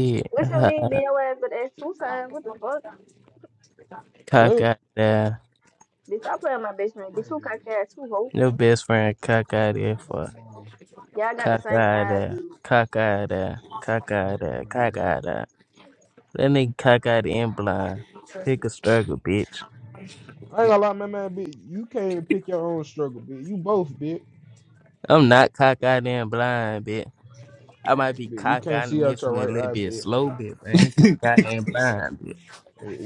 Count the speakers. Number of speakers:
3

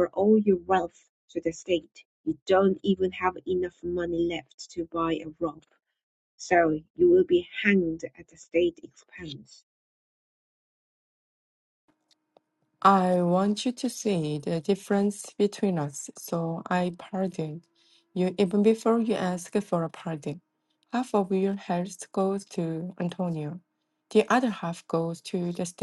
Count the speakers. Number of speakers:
2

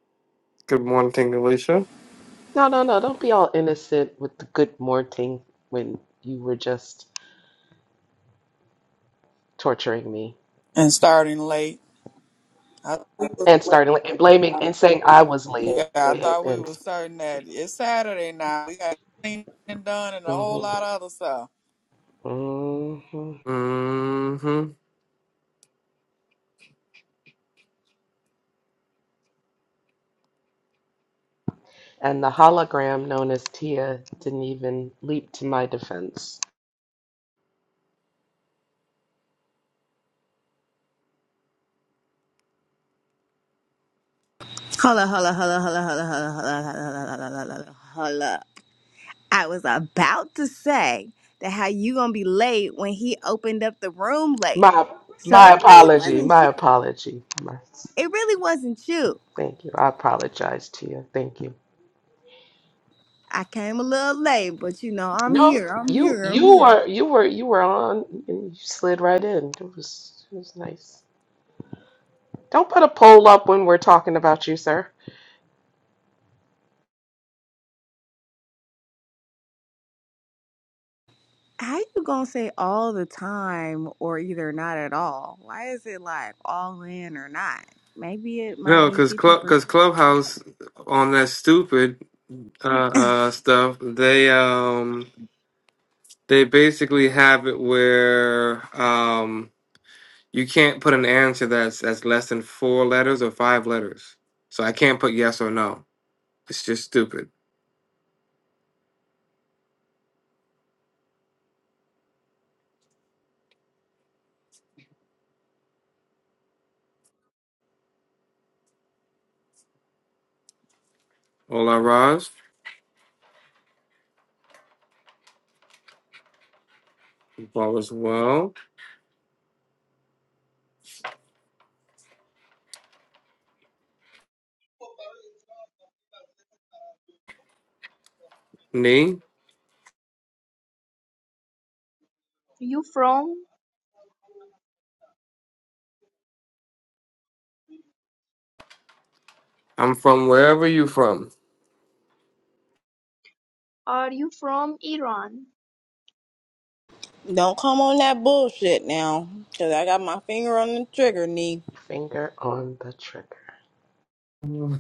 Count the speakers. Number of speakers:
5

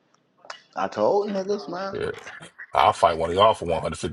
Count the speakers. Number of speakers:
2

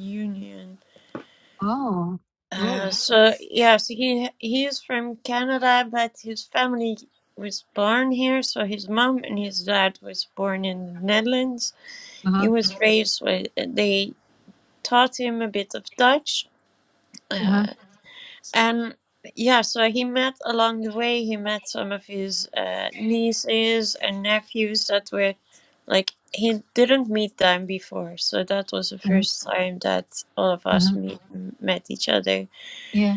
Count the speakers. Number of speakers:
2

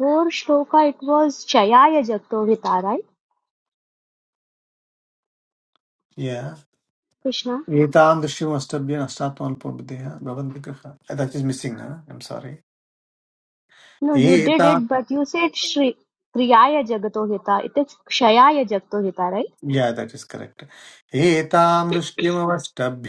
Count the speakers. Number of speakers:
2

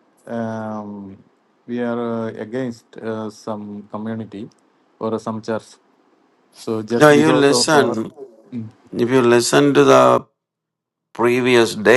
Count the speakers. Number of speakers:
2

